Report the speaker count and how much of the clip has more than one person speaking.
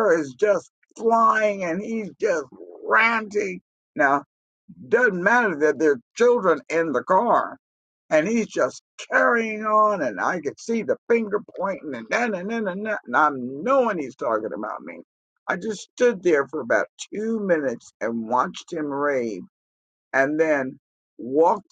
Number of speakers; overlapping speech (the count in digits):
1, no overlap